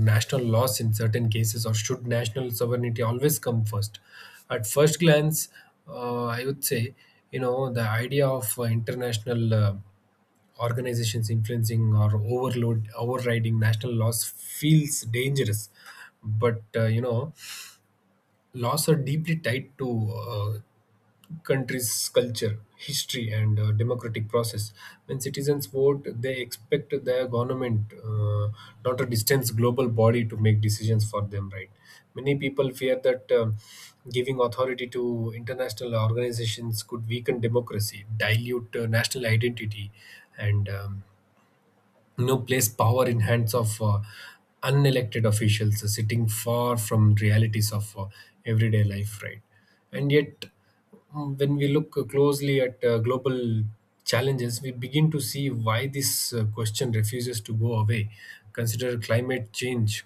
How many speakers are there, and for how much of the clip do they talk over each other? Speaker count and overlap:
1, no overlap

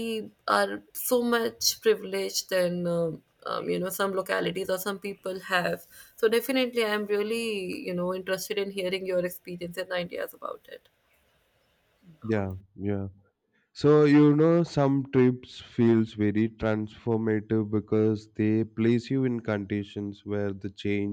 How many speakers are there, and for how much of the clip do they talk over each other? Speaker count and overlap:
2, no overlap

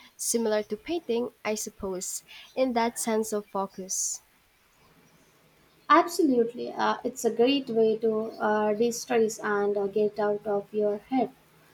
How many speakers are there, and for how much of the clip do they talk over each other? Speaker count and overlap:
2, no overlap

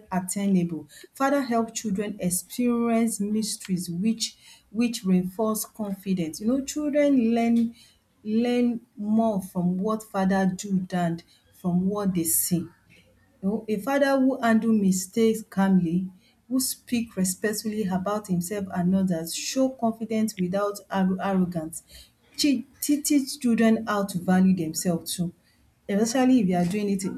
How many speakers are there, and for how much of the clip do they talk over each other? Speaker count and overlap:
1, no overlap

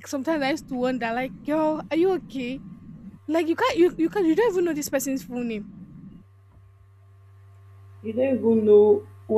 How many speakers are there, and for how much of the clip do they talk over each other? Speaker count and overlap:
2, no overlap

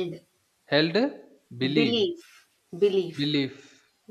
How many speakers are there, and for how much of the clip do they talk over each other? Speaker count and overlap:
2, about 15%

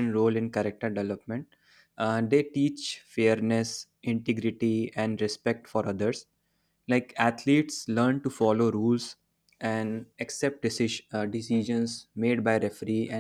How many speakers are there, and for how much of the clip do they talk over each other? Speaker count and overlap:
1, no overlap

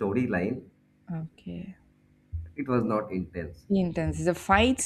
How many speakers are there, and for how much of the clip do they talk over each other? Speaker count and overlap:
2, no overlap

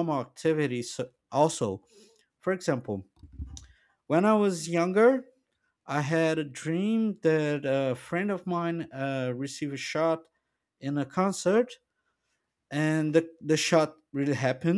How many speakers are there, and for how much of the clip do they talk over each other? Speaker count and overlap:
1, no overlap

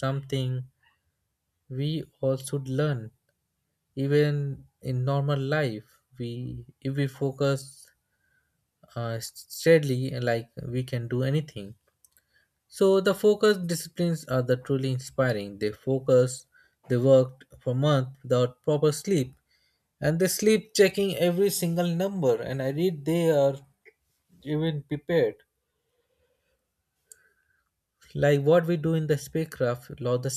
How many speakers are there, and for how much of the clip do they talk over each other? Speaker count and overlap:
1, no overlap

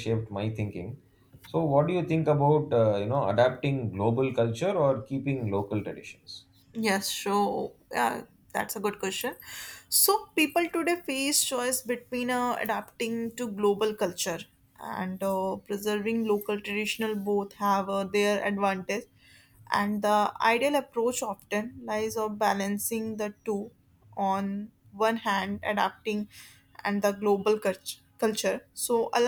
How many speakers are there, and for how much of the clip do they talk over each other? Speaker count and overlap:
2, no overlap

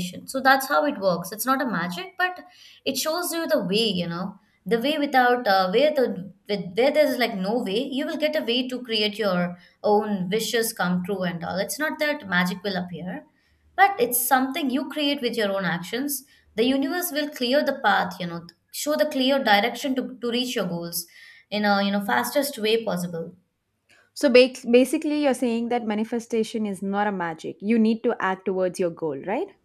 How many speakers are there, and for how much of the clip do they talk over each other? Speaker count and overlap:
2, no overlap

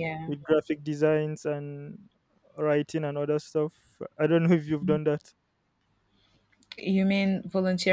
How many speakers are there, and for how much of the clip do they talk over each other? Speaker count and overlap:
2, about 1%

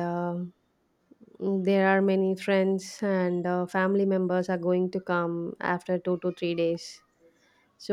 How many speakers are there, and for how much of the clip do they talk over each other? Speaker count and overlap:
1, no overlap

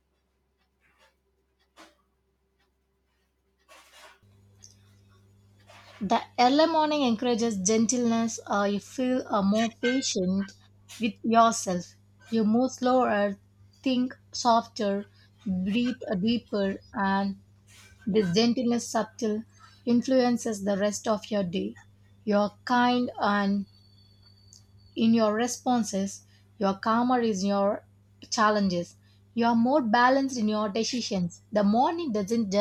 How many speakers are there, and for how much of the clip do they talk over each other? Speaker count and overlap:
1, no overlap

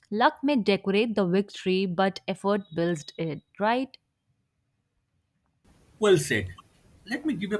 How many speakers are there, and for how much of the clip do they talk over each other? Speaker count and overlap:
2, no overlap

